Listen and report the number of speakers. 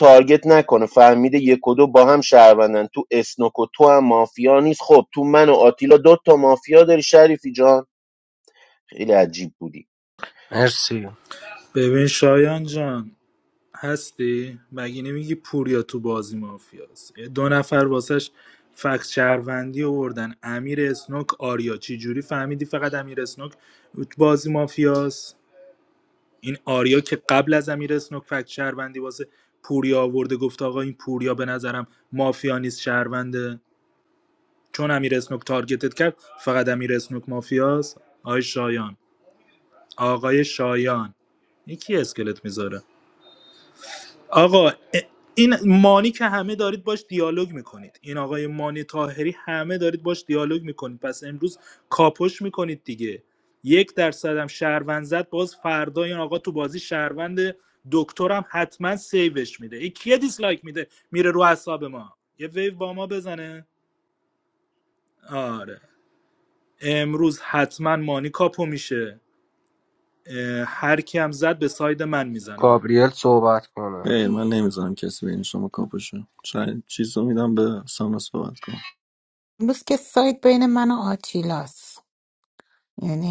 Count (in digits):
5